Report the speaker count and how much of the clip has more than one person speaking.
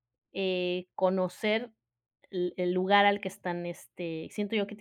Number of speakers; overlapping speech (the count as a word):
one, no overlap